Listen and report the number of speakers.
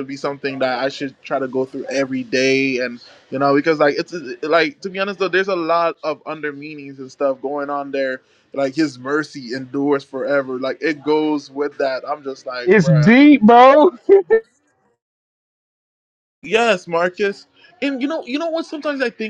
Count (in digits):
2